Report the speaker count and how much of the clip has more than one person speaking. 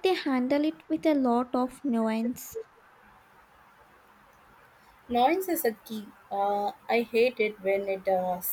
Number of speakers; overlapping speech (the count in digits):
2, no overlap